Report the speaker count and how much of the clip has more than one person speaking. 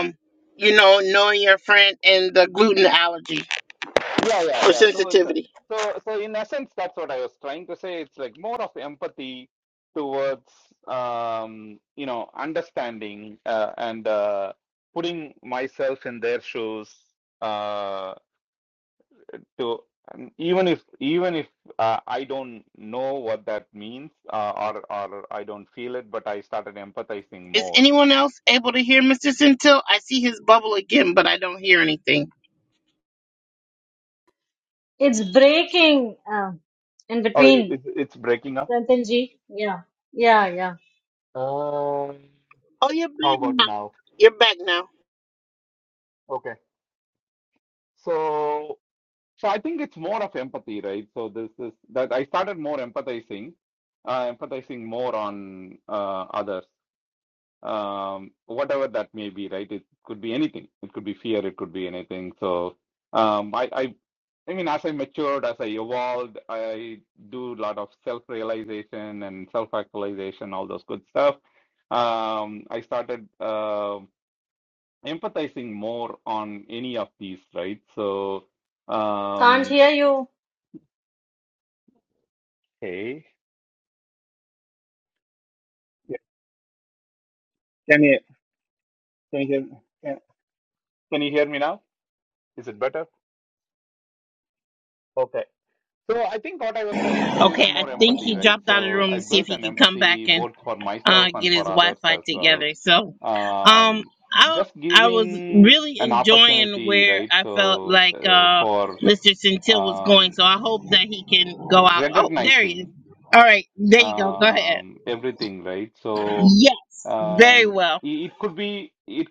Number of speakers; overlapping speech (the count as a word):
three, about 12%